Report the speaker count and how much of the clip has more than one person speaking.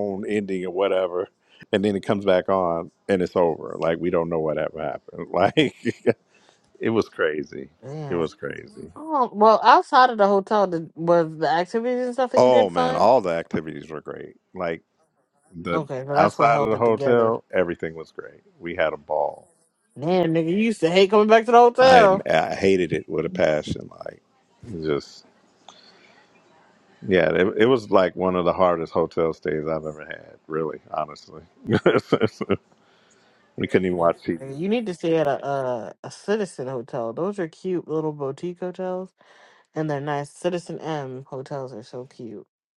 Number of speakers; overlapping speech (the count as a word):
two, about 8%